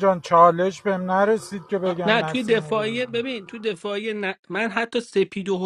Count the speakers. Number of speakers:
two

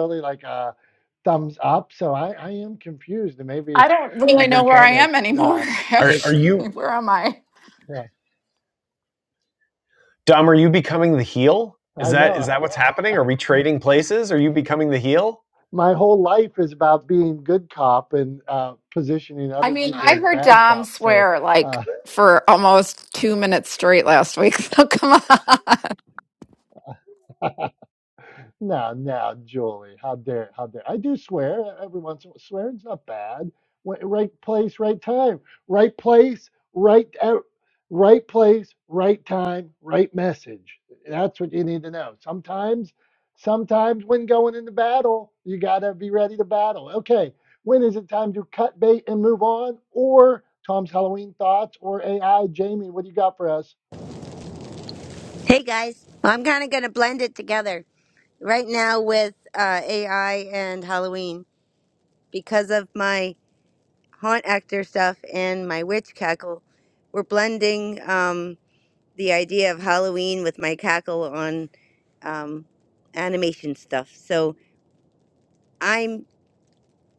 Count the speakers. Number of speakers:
four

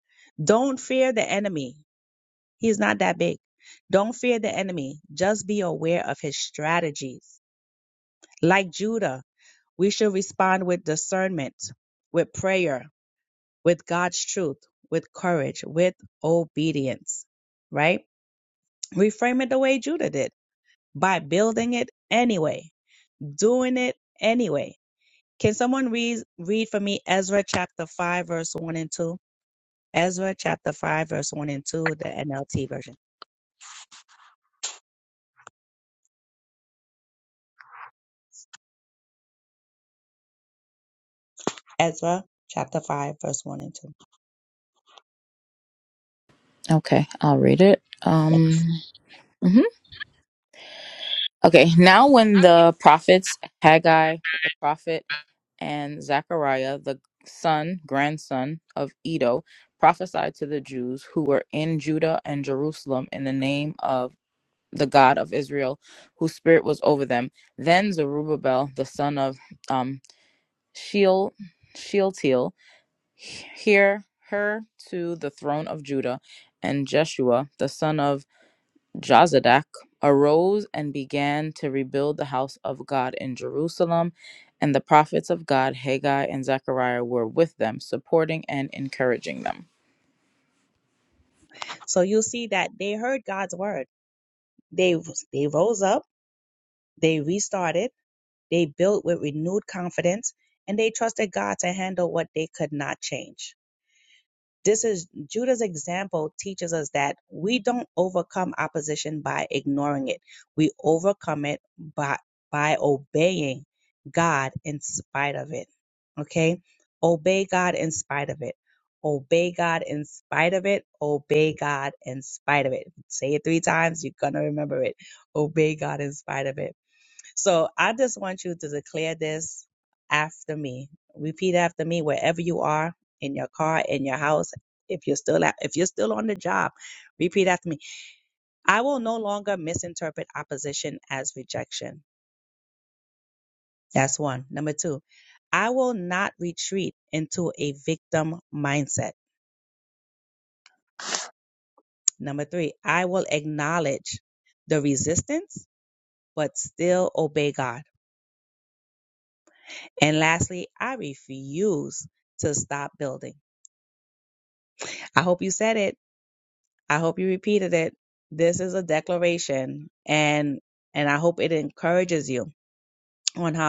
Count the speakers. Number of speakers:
two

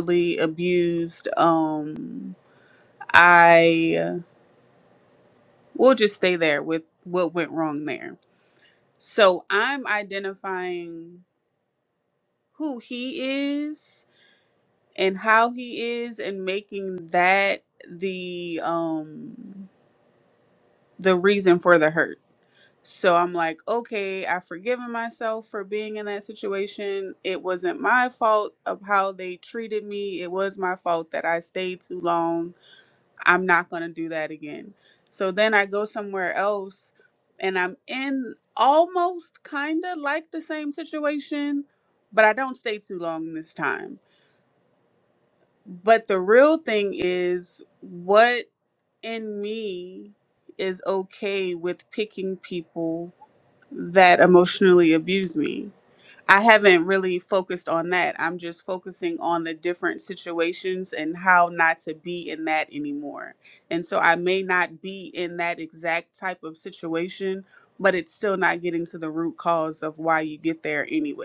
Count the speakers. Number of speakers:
one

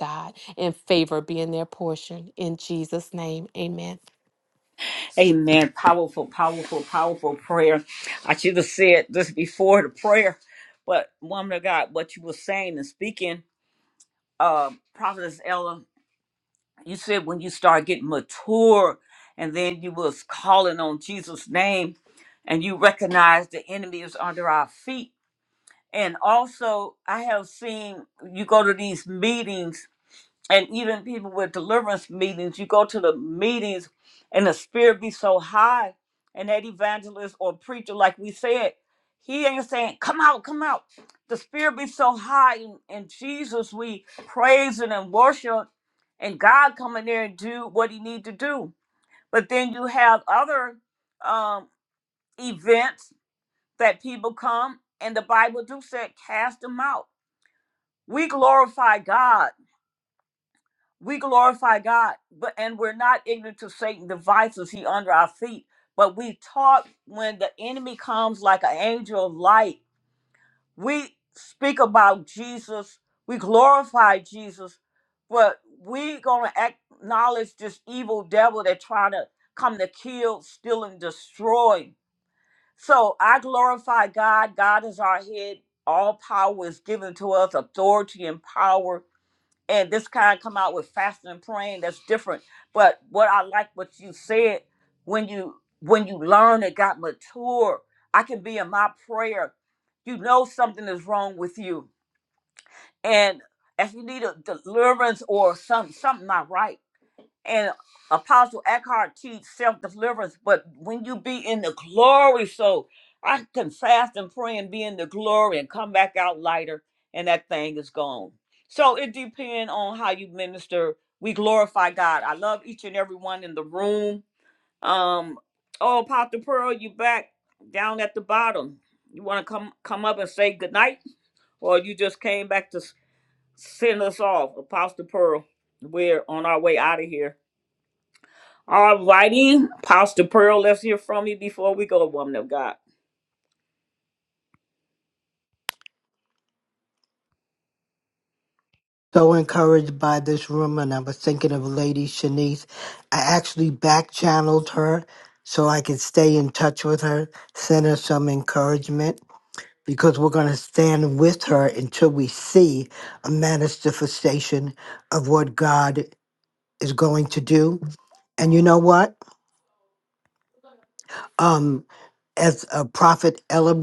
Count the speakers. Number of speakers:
three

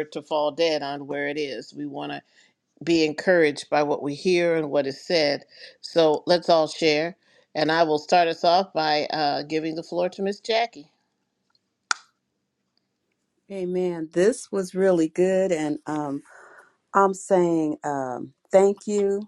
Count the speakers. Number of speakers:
two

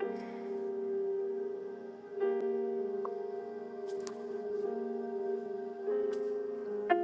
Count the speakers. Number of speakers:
zero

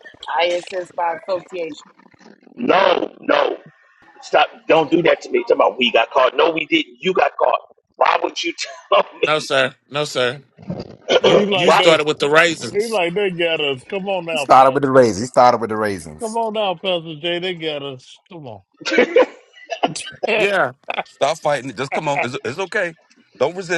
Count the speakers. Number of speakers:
six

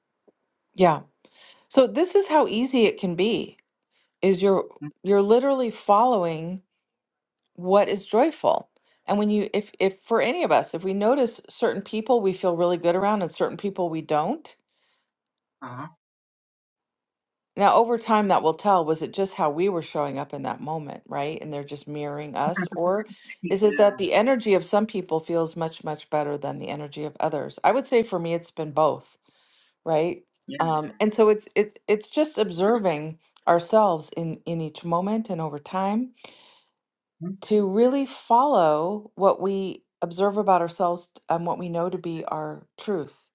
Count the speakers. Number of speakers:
two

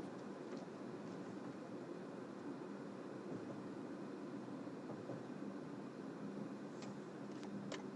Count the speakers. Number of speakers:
zero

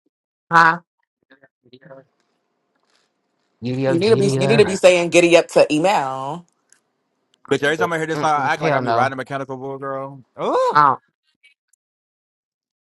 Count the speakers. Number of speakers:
three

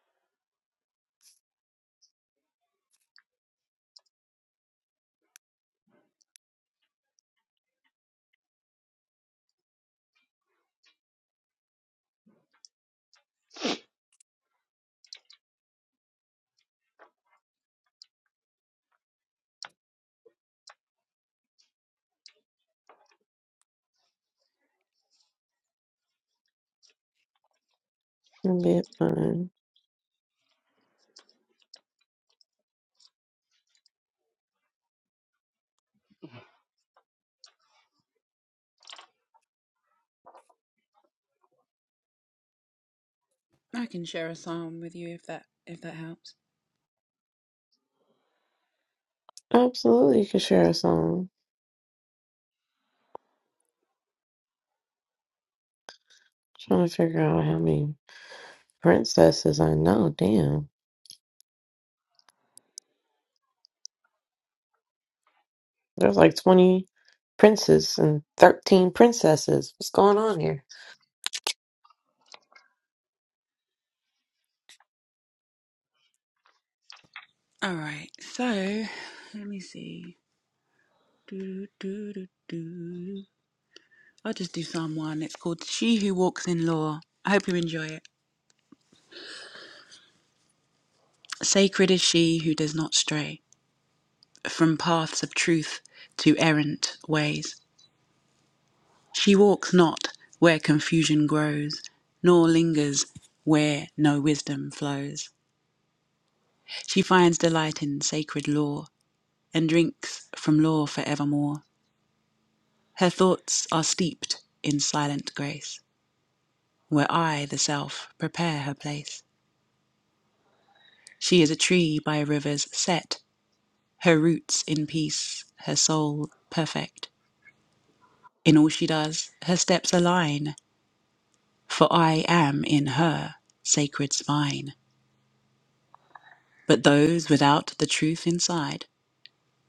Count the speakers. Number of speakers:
two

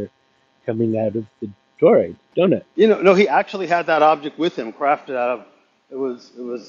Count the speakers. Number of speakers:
two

